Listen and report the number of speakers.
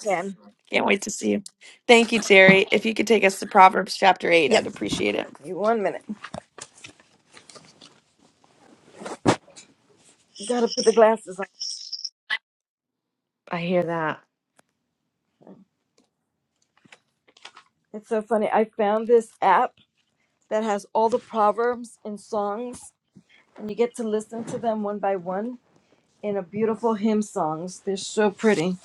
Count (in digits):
2